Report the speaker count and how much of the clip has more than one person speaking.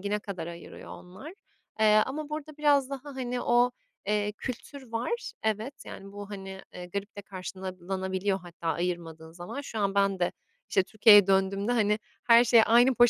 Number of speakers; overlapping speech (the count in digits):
1, no overlap